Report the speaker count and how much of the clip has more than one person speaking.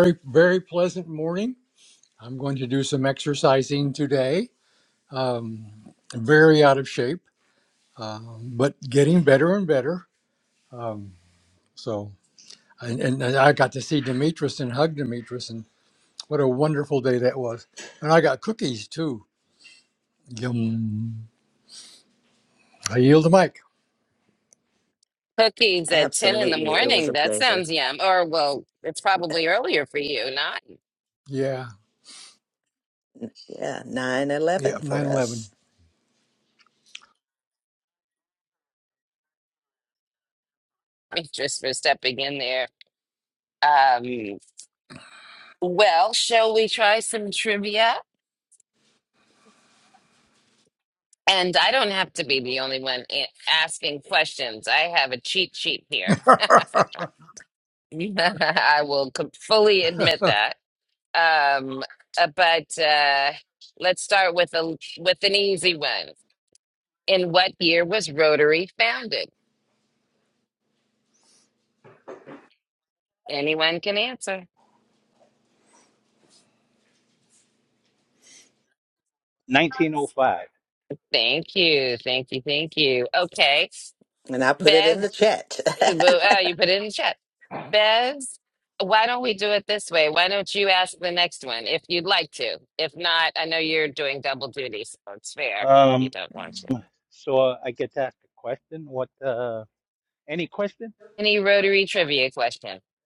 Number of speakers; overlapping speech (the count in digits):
4, about 3%